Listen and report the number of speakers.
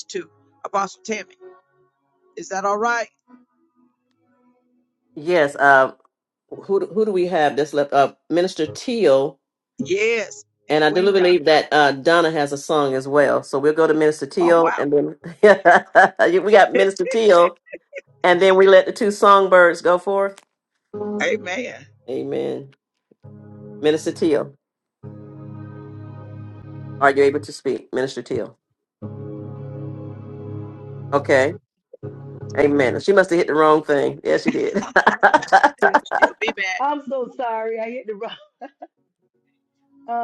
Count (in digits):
3